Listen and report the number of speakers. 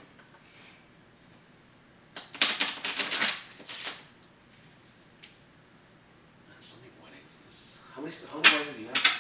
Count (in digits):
1